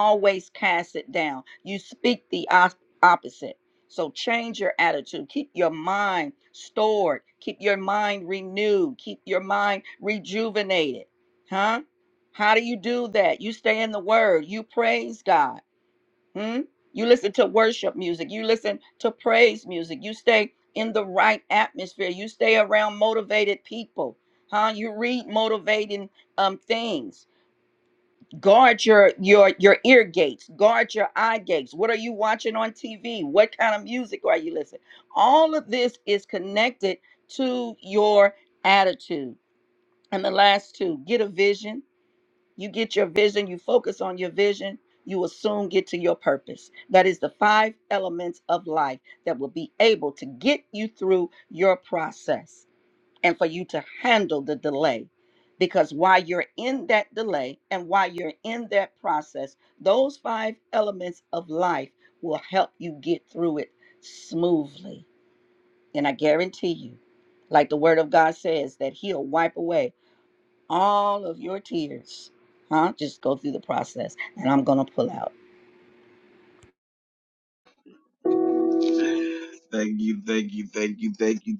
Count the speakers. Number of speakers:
2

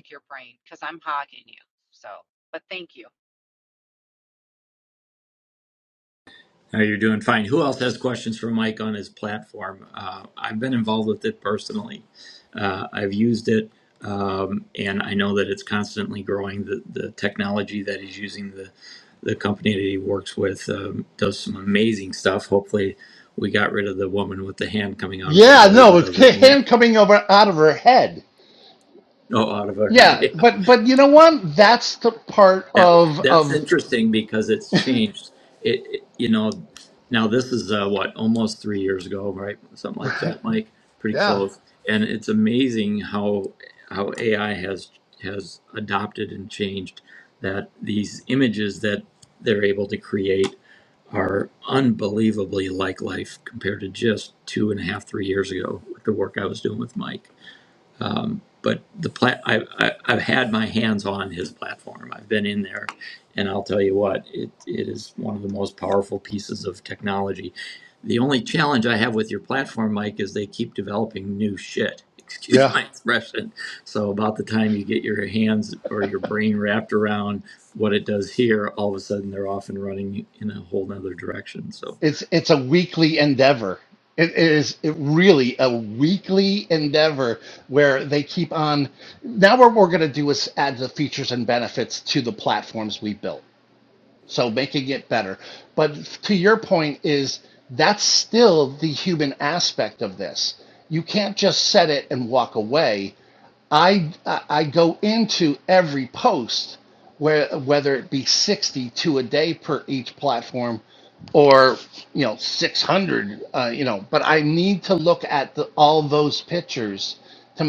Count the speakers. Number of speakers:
3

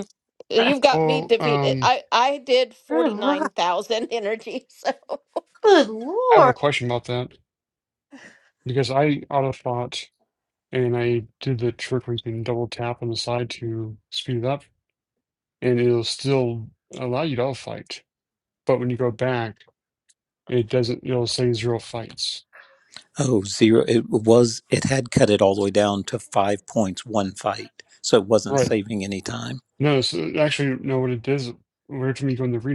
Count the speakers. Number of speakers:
4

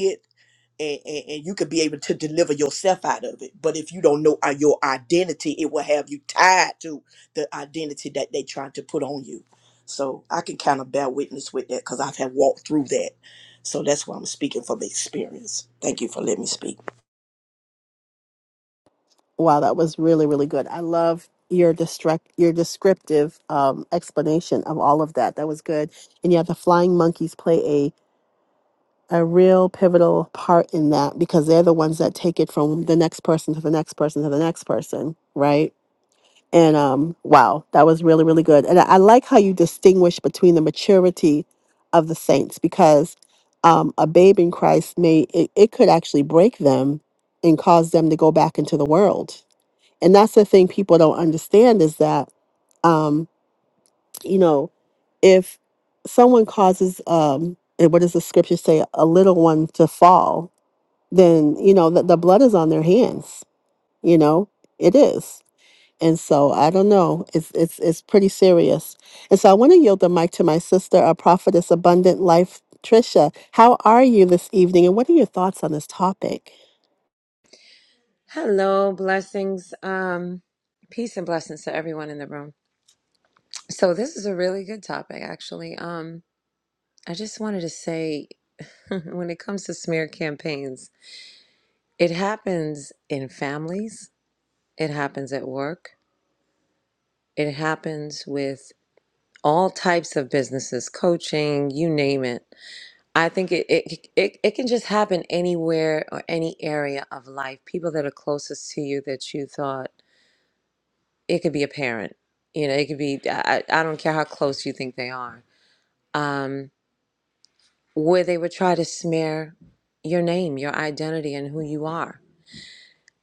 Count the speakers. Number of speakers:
3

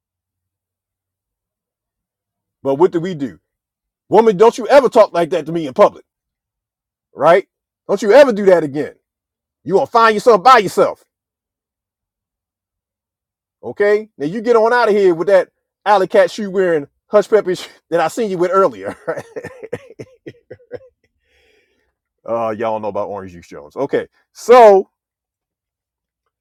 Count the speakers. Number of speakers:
1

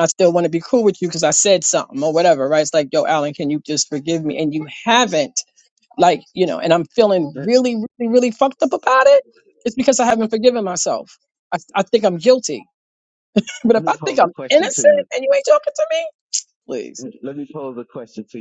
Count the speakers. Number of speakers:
2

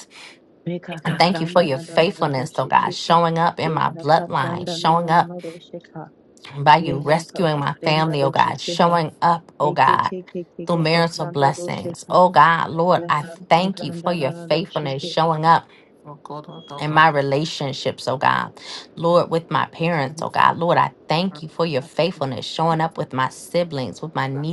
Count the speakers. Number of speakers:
3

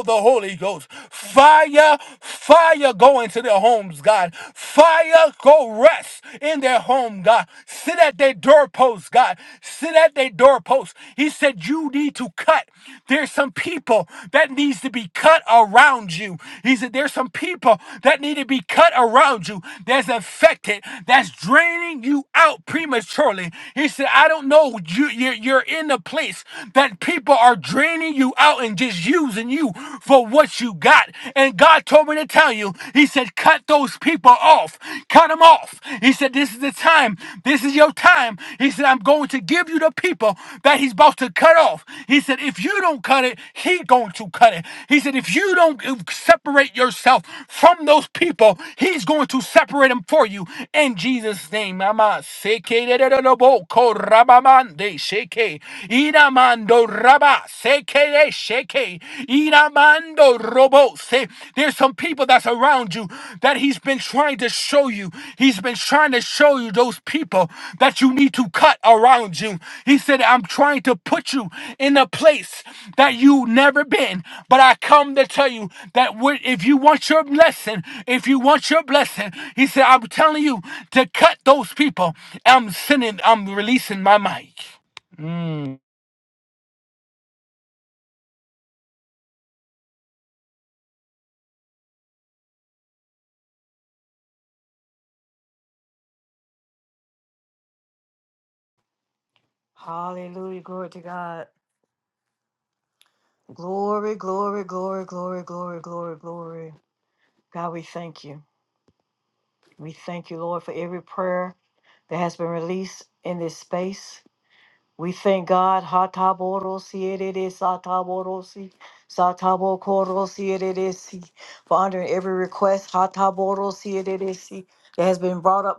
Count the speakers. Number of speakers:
2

